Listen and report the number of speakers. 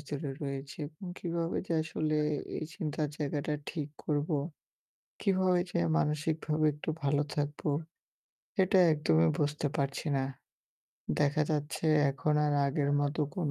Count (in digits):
1